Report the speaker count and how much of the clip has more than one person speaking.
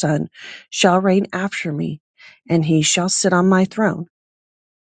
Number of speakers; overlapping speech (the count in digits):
1, no overlap